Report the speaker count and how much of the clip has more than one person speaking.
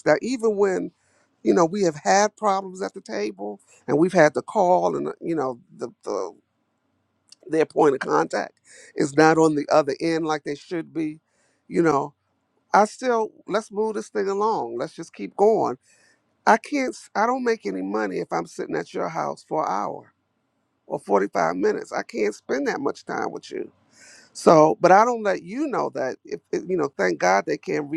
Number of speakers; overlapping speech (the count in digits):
1, no overlap